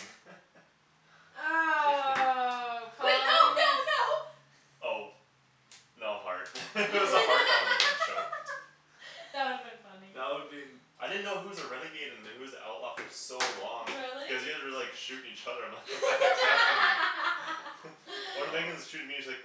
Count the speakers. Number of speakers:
4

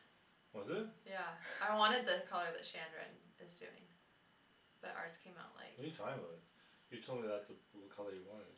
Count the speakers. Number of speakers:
2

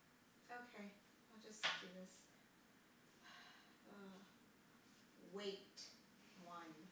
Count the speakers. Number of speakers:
1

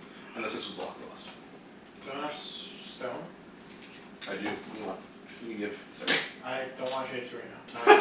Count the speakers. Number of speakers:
2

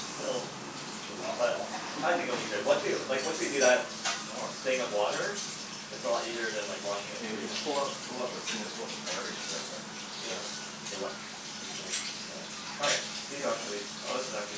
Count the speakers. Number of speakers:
2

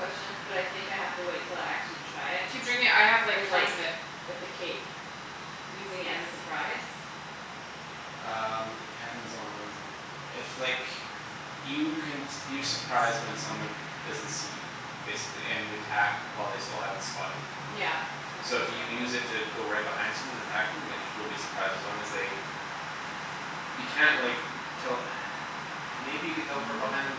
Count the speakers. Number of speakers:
3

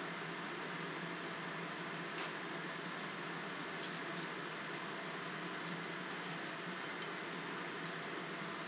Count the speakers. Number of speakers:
0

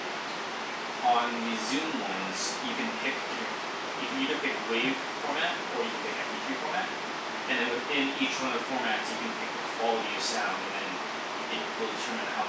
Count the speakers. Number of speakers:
1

